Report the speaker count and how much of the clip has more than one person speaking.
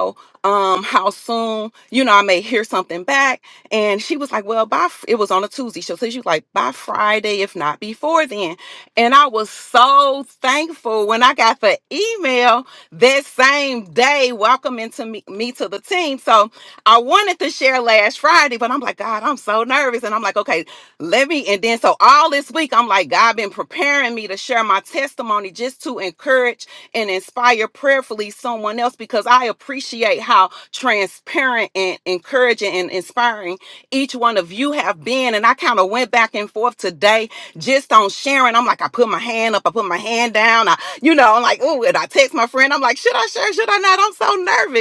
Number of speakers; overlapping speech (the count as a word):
one, no overlap